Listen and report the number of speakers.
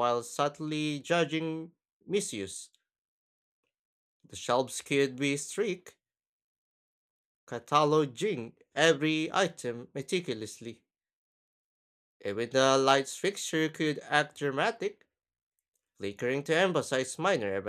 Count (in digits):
1